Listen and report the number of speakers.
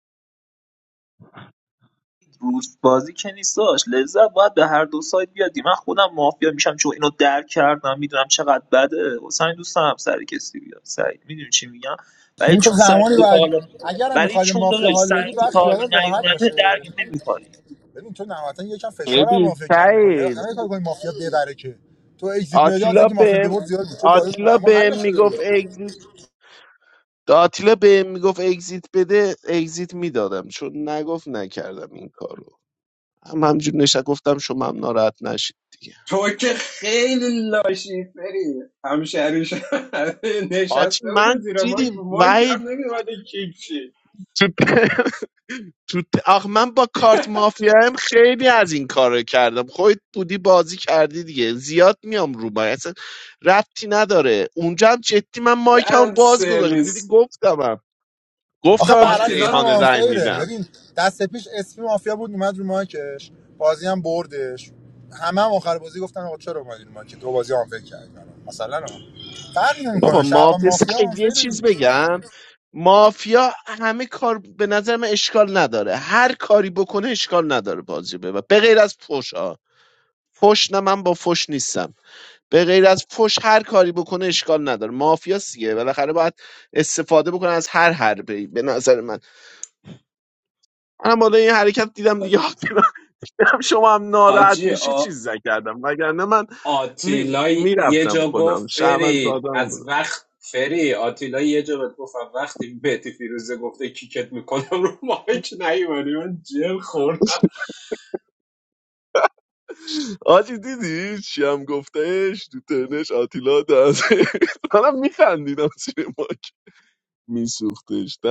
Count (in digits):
4